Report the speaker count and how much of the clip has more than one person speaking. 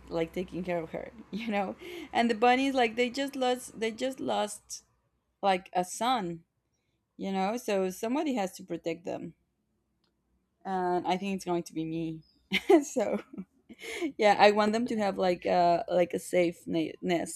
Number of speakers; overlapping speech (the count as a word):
one, no overlap